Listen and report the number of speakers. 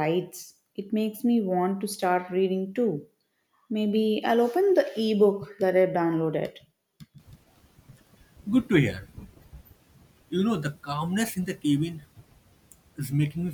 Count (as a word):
two